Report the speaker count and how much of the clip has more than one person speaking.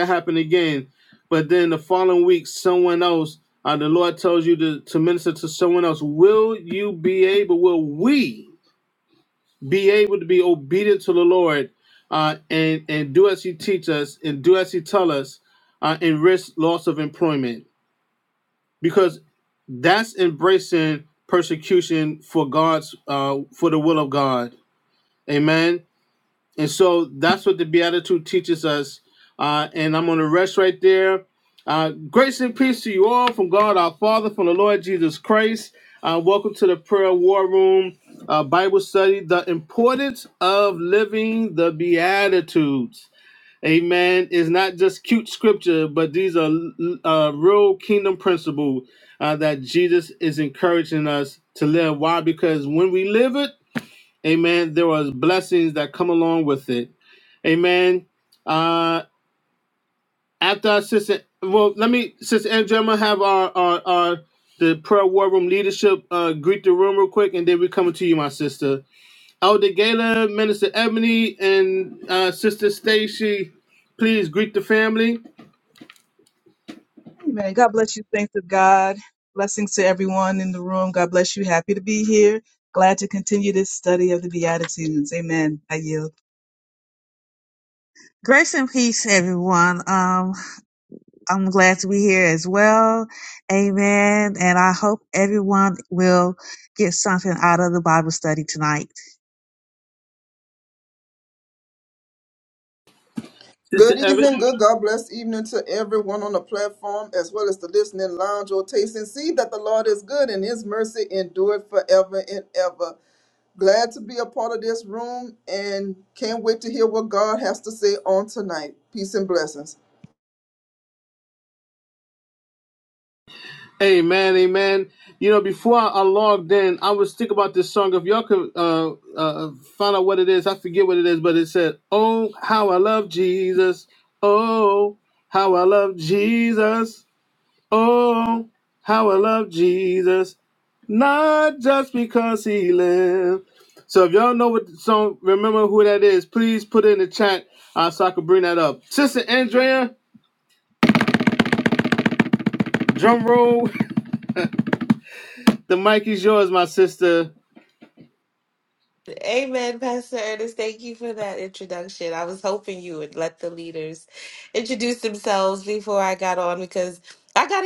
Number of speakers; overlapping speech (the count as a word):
five, under 1%